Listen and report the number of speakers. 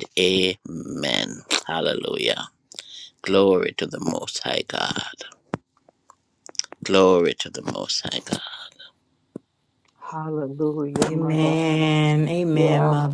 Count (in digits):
3